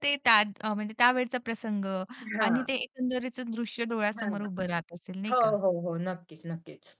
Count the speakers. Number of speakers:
two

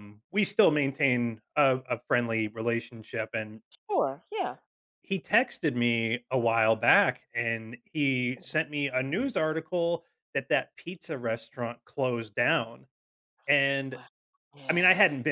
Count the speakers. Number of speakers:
two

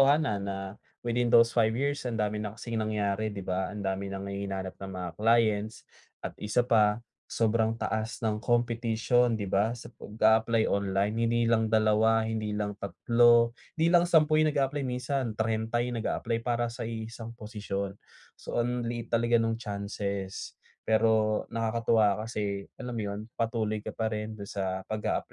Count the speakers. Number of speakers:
one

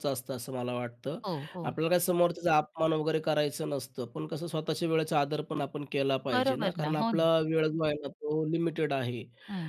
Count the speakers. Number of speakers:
two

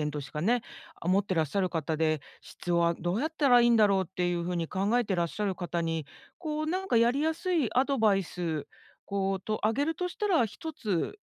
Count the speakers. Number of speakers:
one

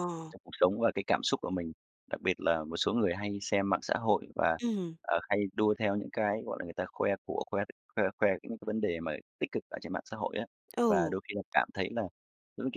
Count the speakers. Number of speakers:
two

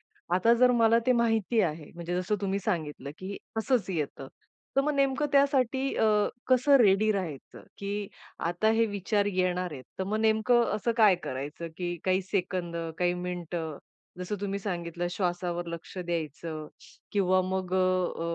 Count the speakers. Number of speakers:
one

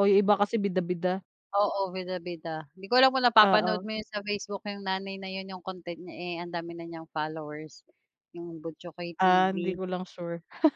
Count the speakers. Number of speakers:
two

